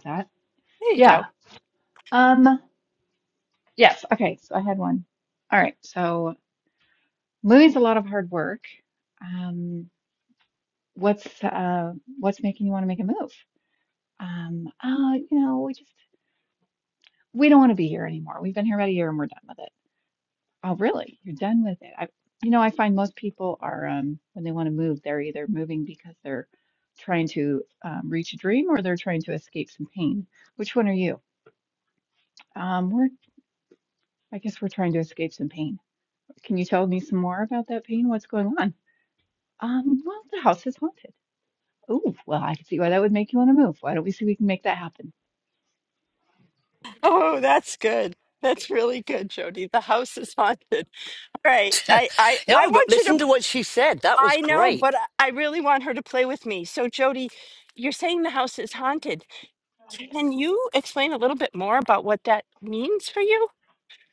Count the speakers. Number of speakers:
3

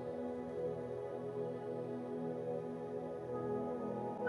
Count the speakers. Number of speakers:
0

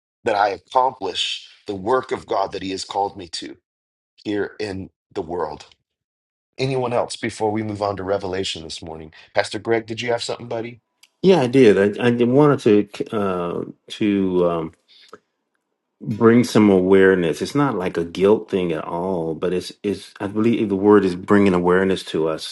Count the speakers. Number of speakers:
2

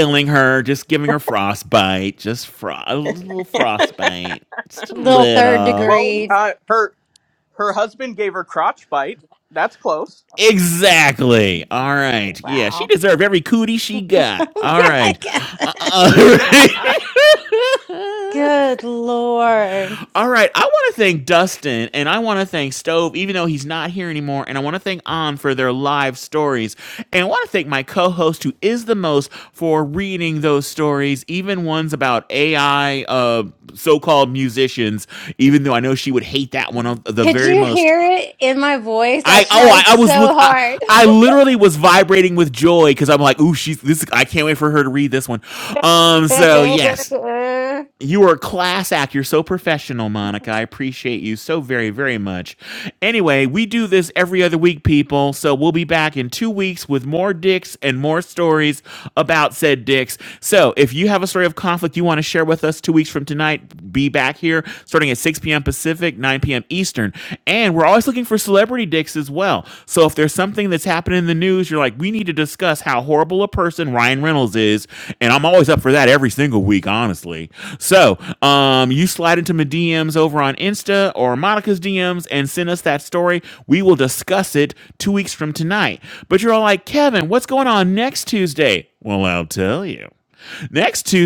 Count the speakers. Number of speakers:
3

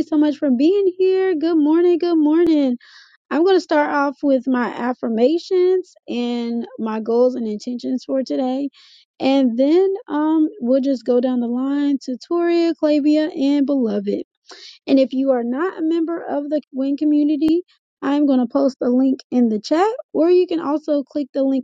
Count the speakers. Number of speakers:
1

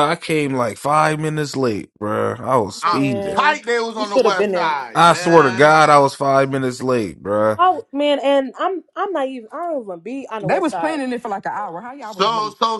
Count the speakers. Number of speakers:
4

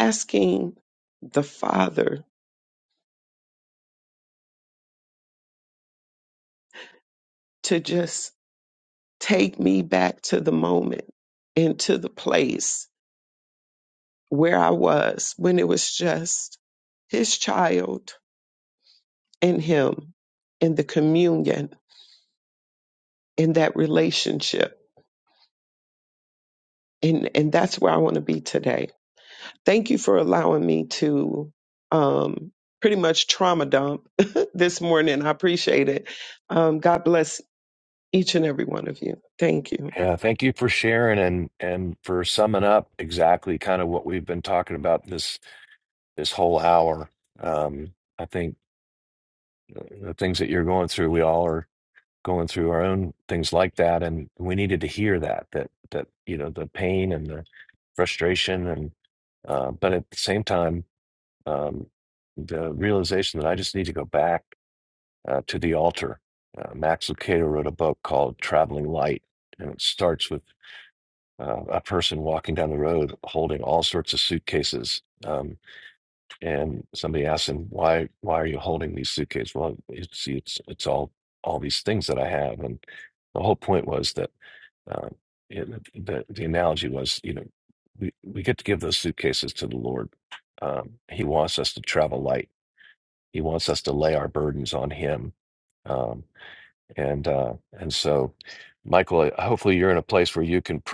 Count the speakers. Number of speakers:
2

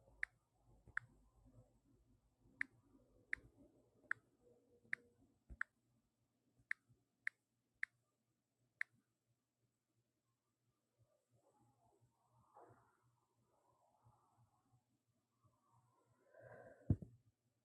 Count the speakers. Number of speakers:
0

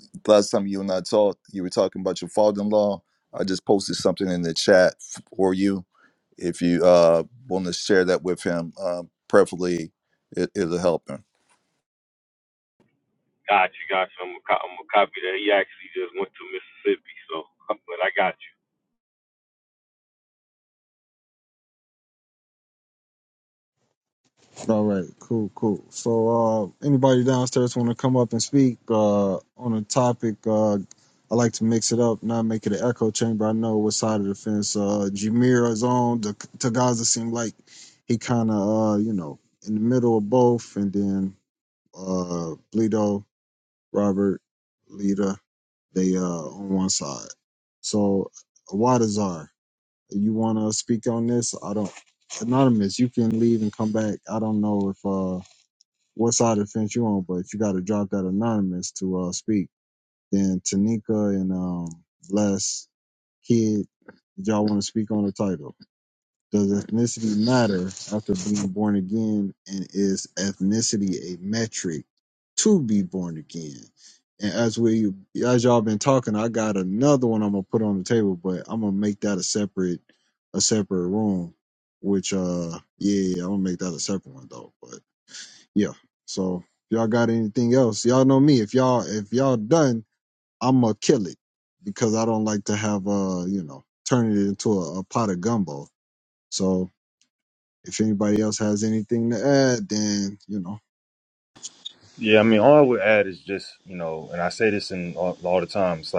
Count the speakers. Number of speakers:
4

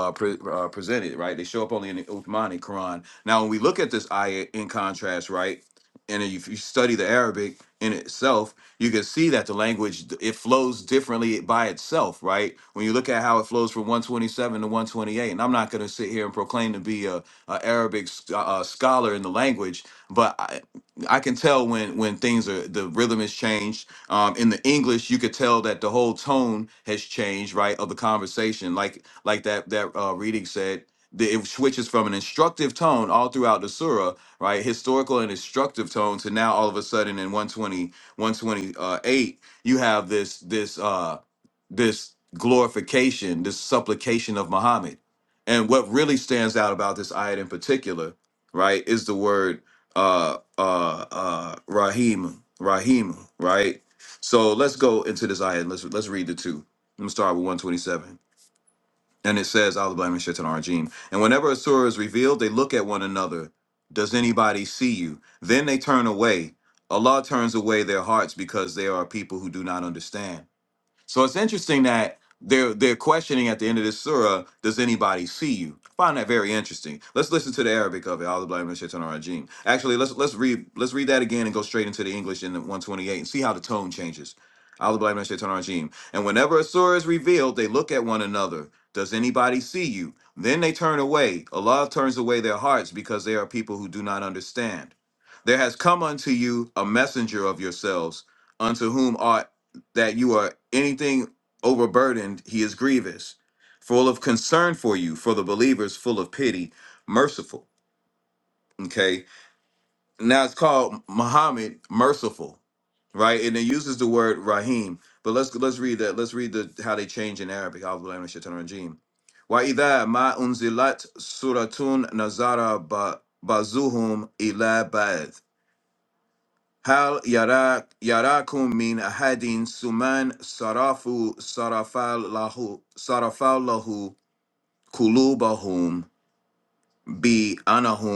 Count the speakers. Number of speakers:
1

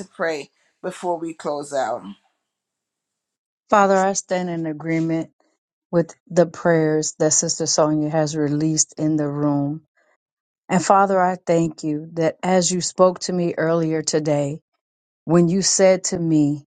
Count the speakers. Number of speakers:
2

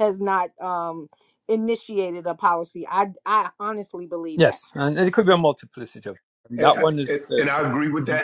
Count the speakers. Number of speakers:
3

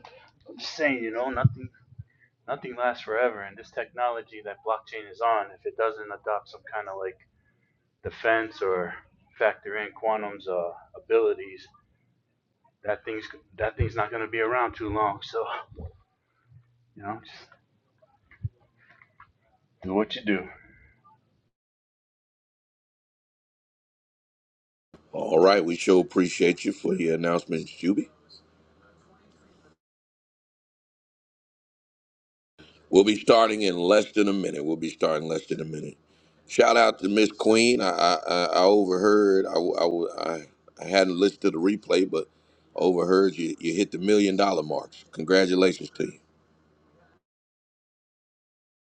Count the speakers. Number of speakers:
2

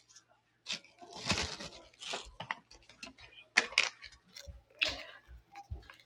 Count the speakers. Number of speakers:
0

